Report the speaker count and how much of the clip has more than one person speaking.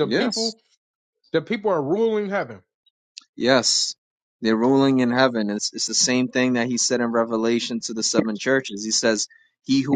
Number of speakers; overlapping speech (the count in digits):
2, about 5%